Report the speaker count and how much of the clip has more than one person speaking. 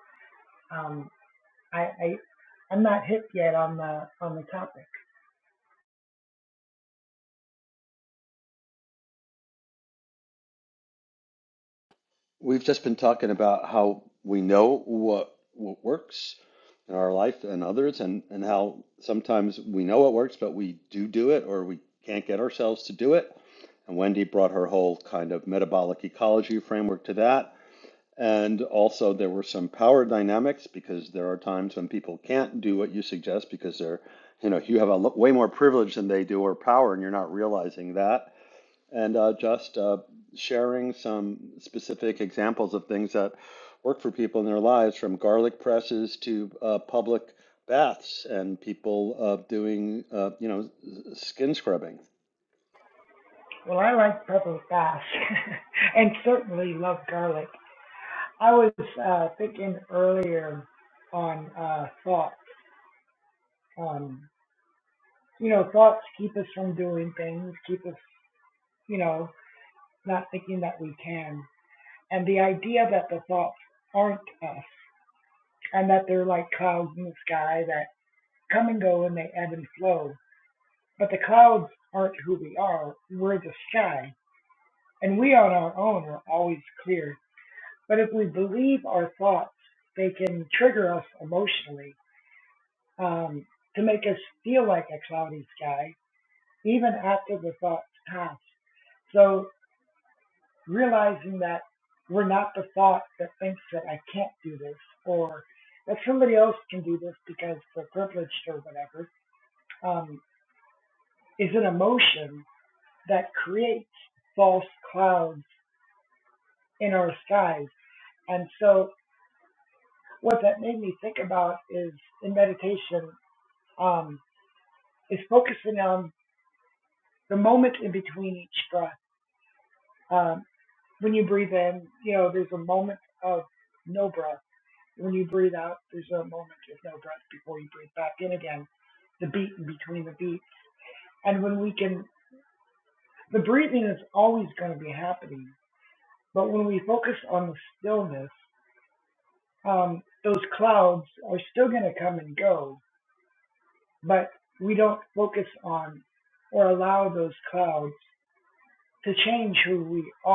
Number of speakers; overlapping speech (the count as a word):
two, no overlap